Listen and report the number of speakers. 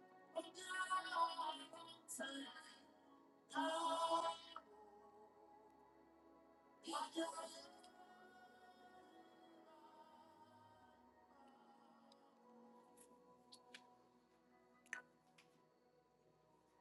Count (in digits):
0